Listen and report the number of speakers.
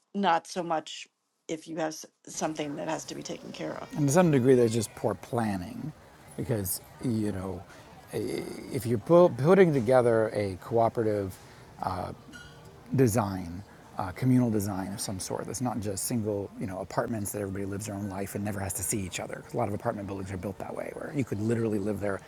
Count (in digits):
2